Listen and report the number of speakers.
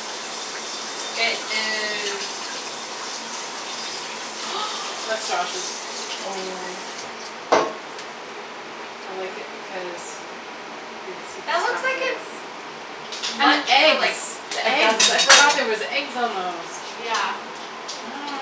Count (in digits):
2